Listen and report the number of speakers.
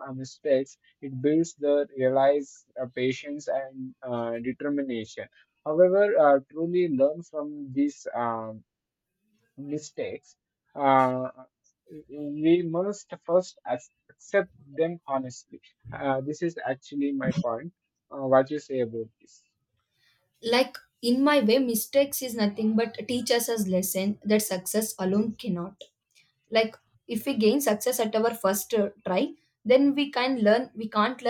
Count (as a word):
two